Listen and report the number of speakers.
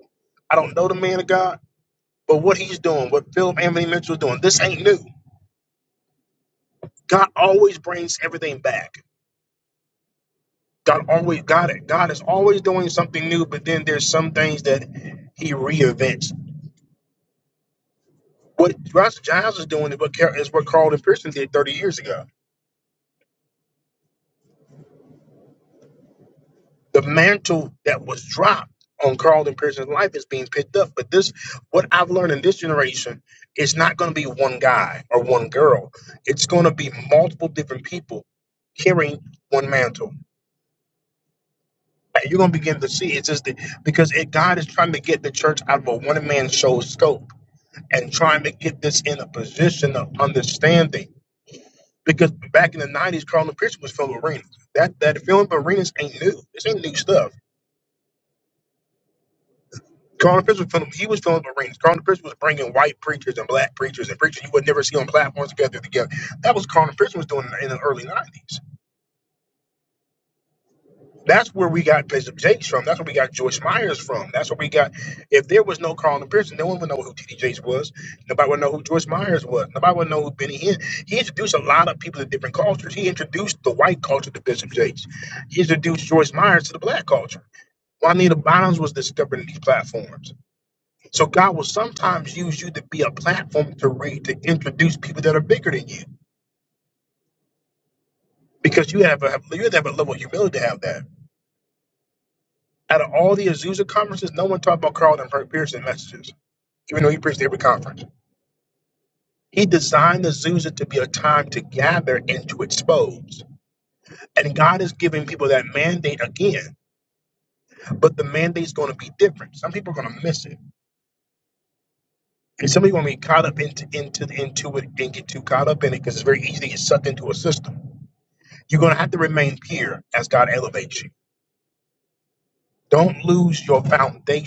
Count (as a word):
one